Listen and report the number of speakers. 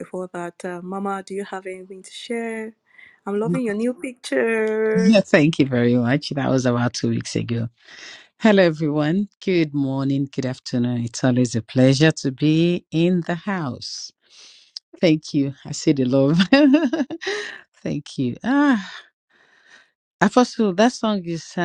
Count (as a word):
two